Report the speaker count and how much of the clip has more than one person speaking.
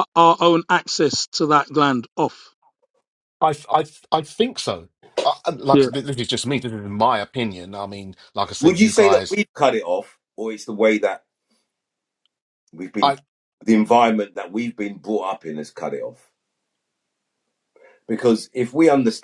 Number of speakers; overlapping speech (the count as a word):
three, about 5%